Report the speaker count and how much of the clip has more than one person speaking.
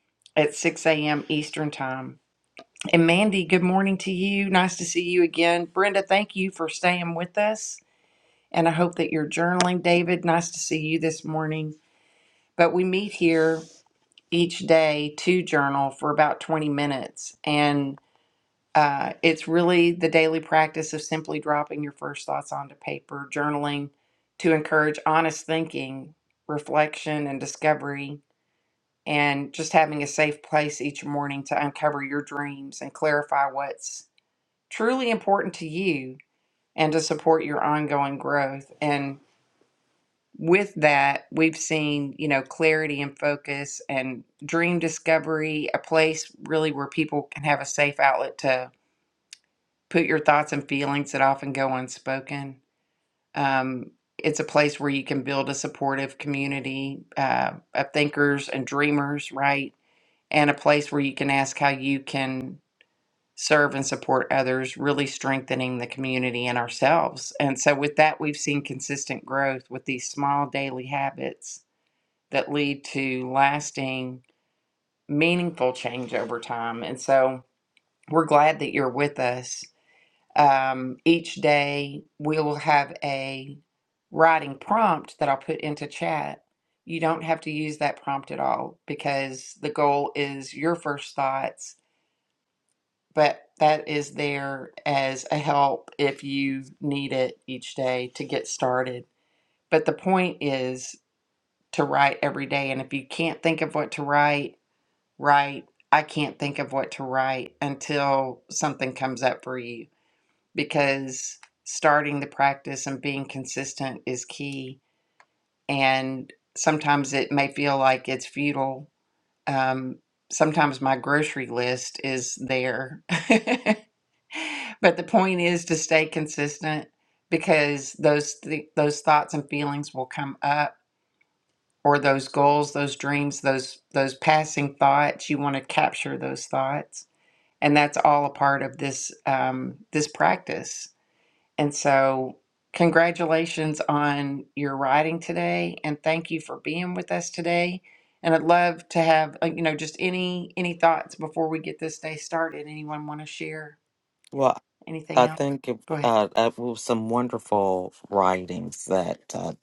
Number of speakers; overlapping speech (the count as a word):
two, under 1%